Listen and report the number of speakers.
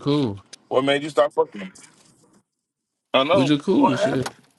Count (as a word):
two